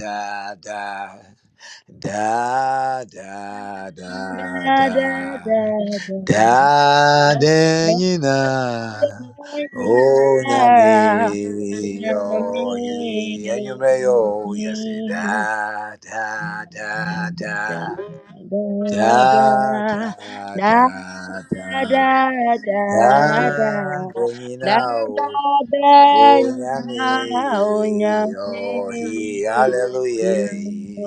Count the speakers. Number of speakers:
2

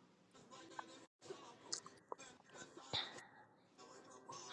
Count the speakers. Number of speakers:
0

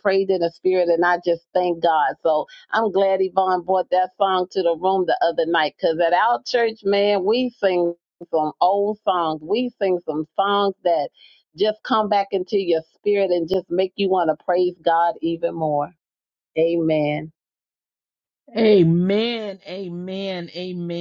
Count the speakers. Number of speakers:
2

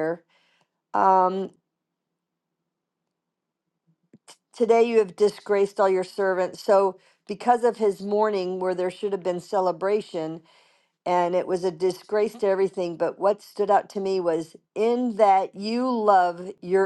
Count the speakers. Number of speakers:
1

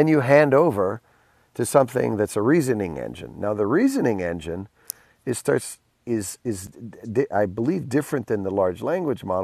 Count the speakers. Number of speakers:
1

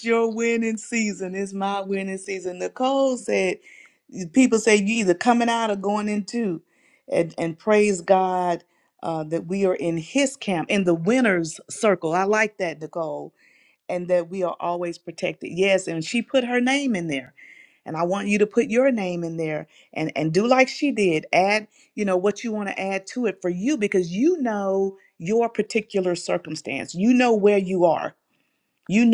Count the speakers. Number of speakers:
1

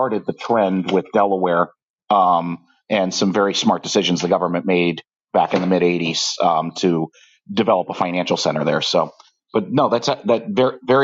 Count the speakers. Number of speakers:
1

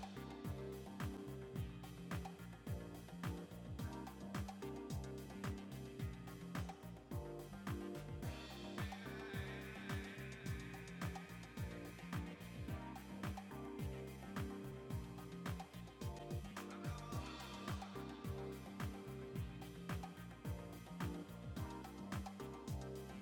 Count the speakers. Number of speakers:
0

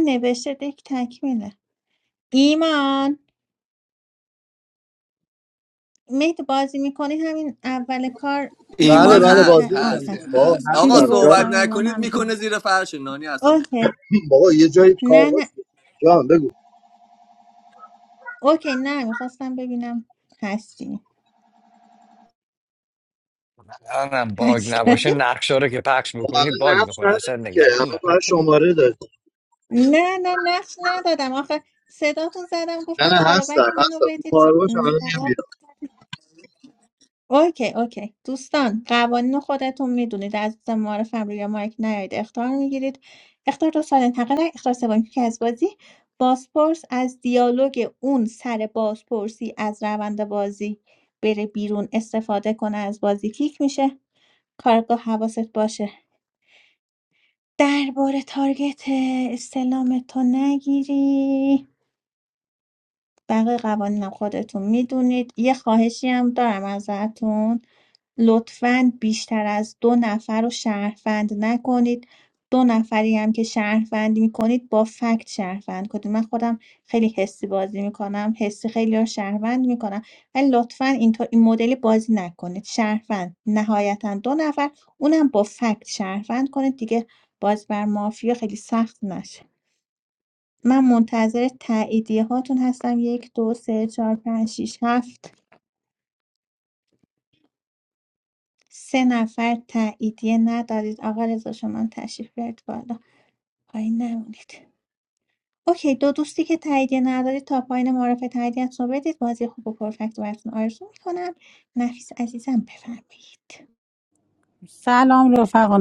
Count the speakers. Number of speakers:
5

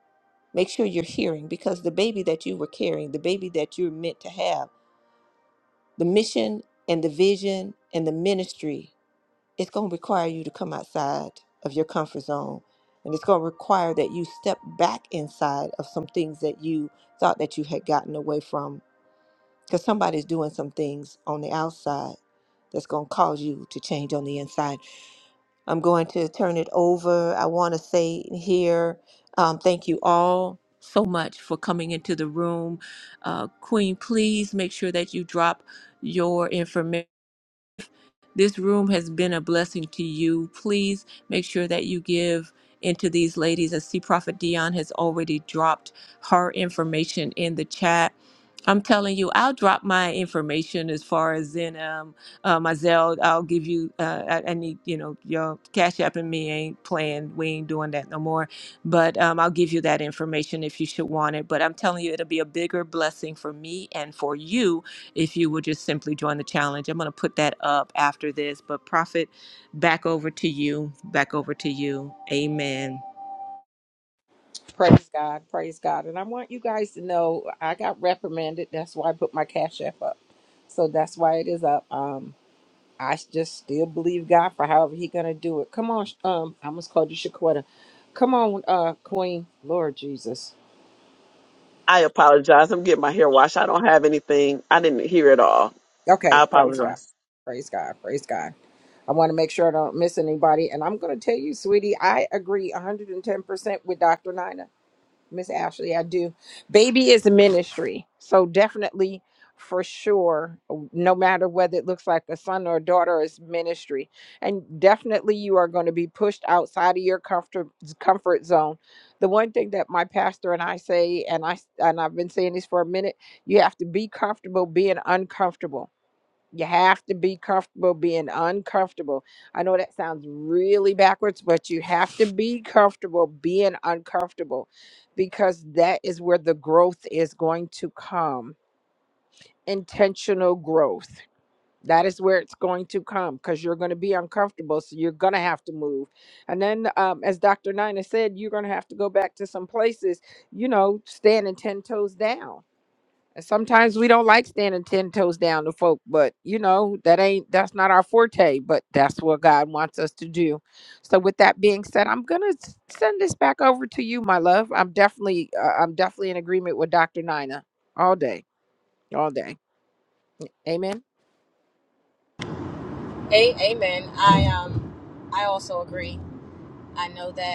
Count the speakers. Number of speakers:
4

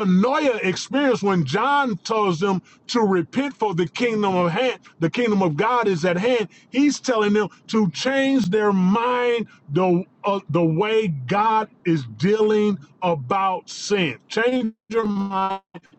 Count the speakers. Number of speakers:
1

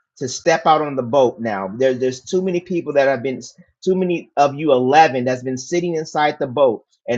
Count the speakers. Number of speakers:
1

